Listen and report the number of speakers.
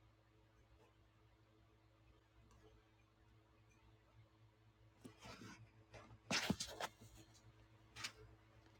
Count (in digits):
0